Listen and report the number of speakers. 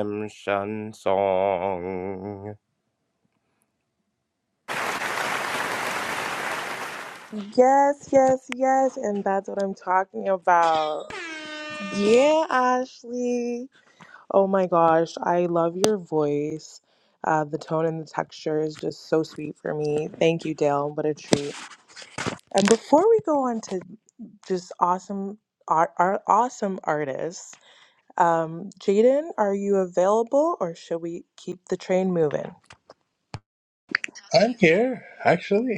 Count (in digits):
3